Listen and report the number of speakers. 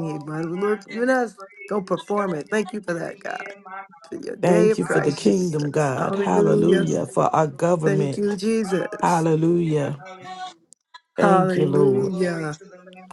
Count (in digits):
3